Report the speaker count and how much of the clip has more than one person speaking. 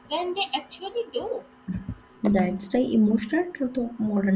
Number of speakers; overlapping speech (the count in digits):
2, no overlap